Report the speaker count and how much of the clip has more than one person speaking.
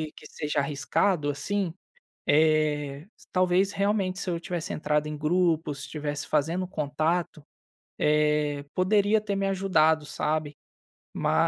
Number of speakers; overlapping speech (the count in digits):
1, no overlap